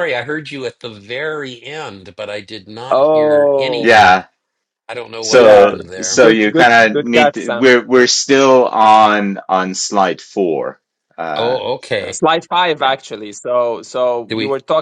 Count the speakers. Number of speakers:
three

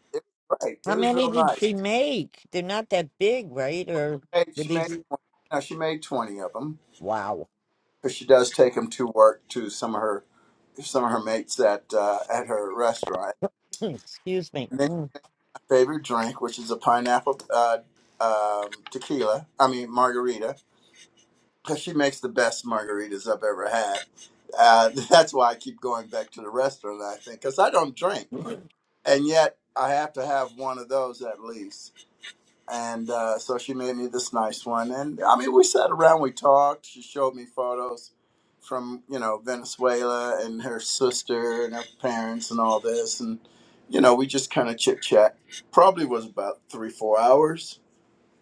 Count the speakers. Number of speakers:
two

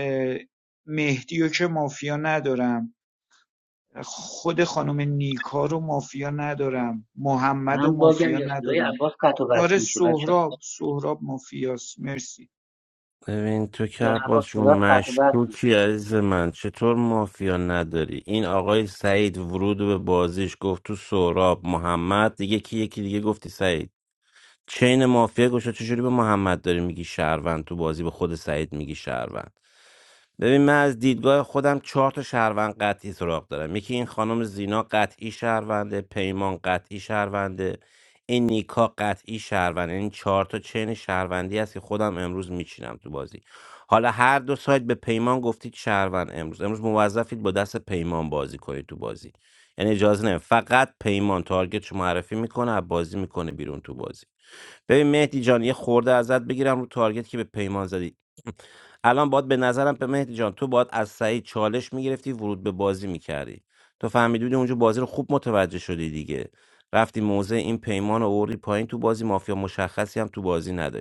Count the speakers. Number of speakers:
three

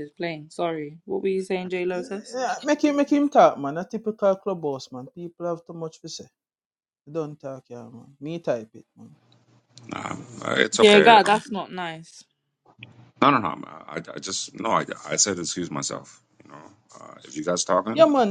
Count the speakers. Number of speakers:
three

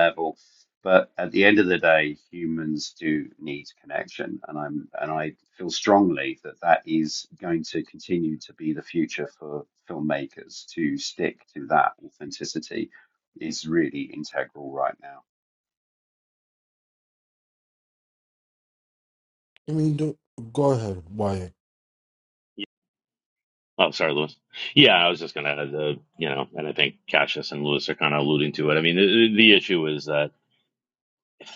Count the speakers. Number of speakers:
three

